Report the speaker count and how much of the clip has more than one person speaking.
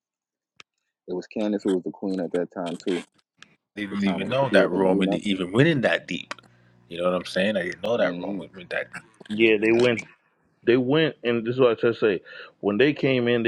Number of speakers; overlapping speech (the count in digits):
3, about 14%